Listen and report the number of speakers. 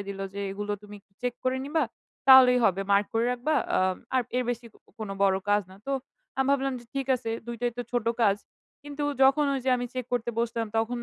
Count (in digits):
1